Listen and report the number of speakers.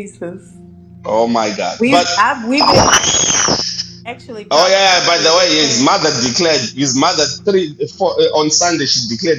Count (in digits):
2